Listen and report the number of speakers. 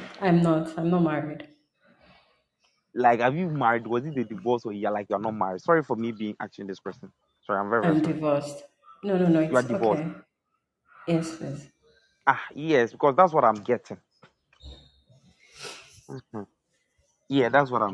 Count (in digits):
2